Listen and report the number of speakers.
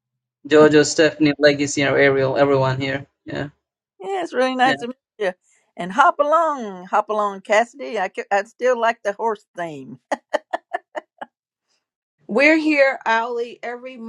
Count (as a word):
three